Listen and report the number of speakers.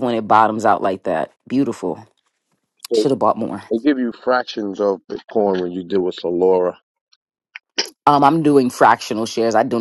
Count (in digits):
2